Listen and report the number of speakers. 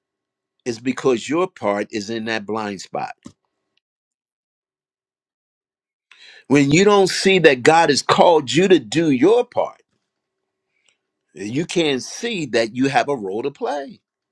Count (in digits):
1